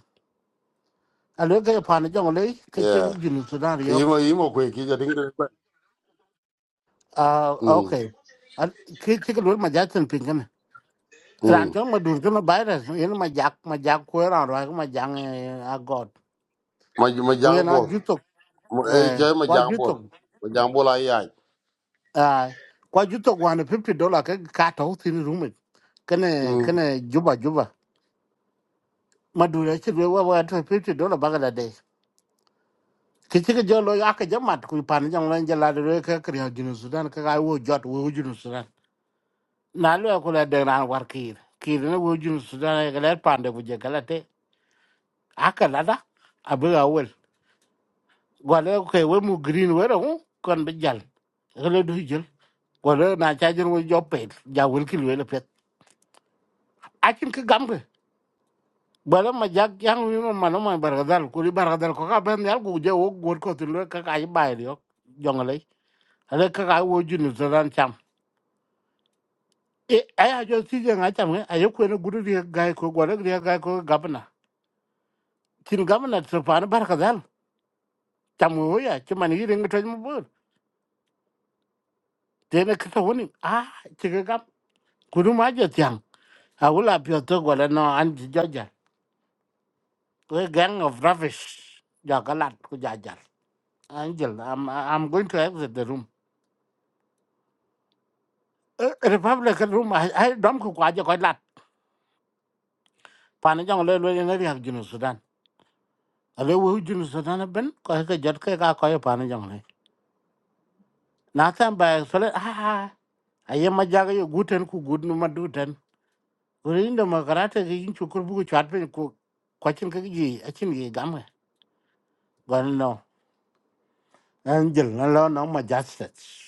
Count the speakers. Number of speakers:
2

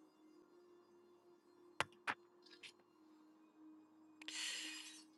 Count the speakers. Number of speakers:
0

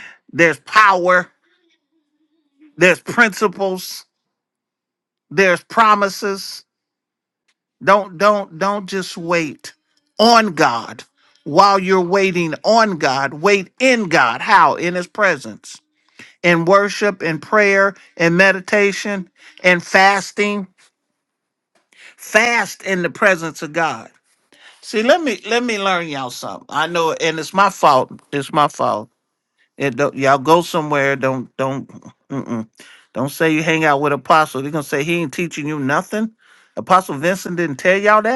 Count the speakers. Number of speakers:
1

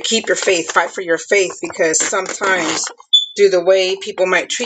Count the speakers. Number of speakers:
1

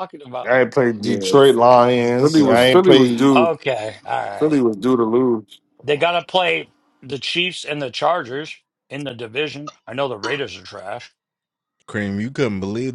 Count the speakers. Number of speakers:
4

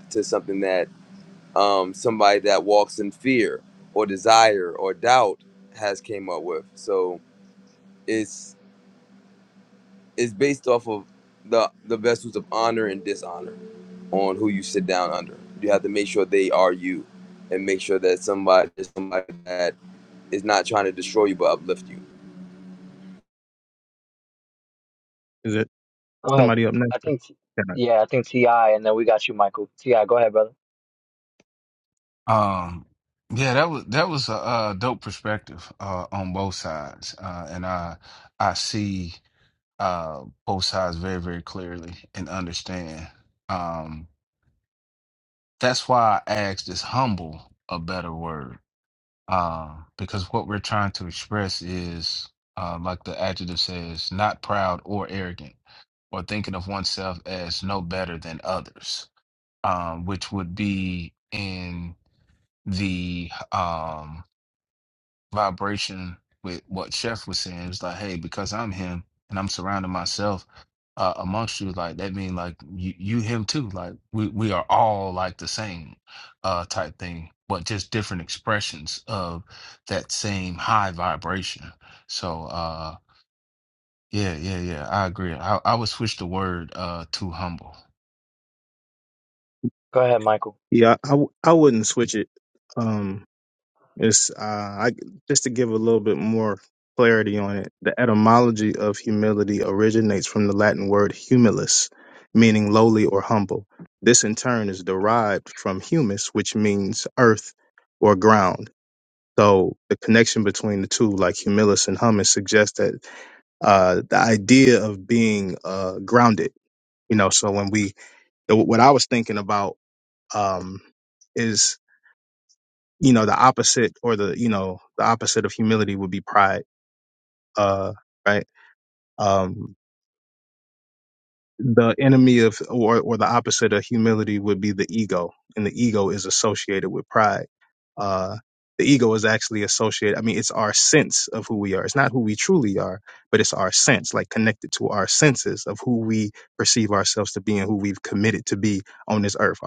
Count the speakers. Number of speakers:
4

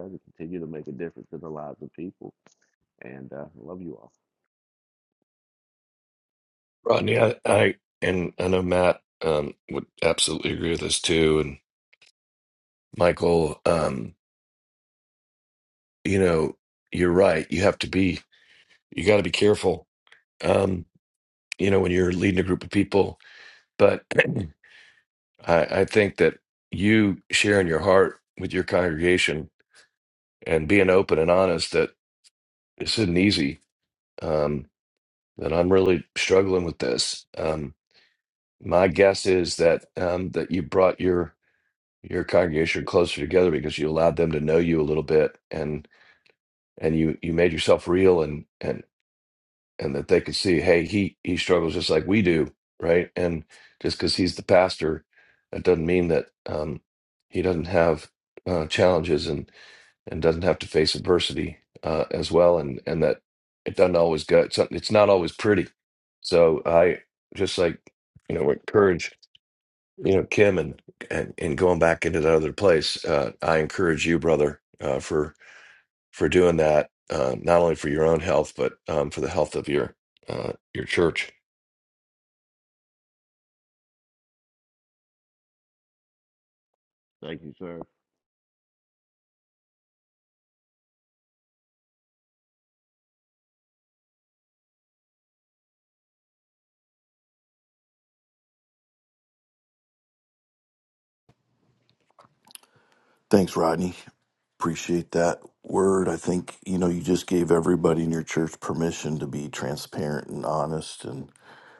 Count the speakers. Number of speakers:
3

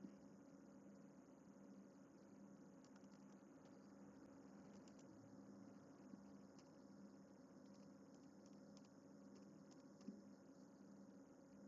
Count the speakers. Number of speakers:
0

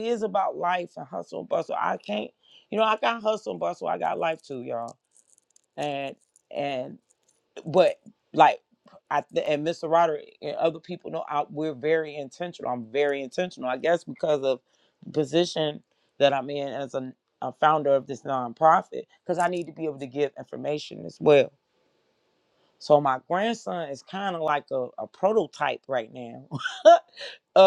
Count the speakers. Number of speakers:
1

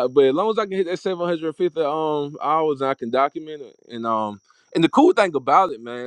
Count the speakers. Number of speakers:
1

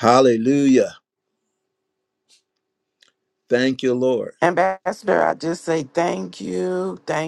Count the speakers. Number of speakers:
2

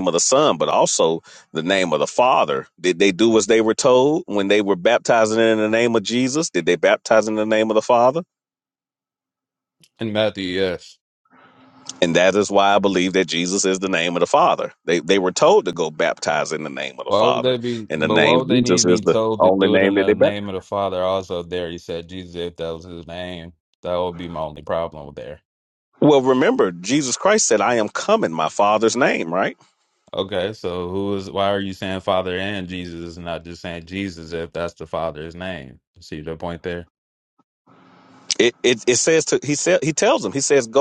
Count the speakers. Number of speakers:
2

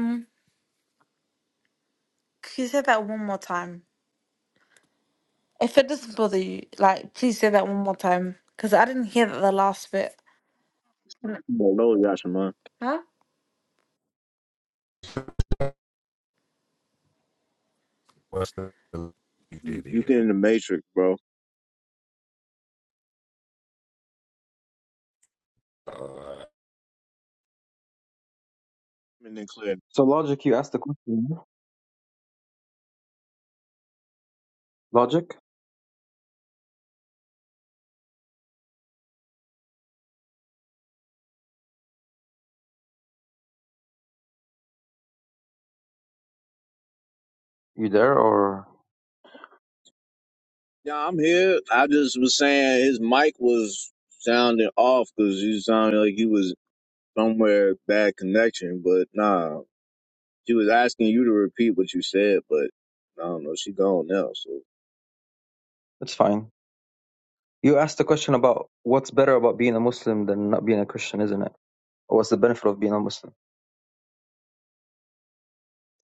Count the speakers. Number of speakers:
4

